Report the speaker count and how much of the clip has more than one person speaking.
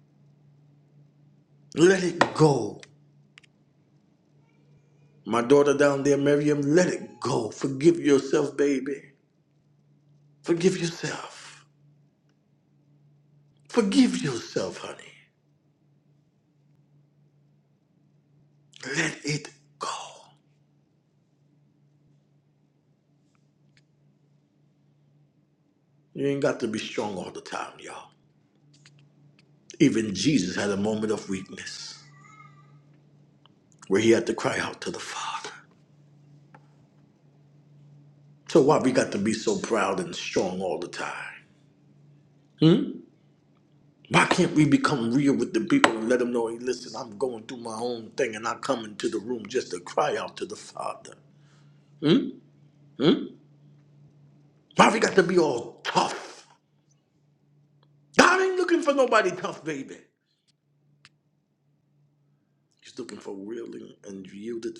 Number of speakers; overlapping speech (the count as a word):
one, no overlap